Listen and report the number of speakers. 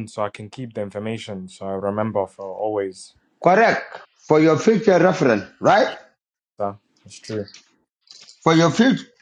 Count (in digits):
2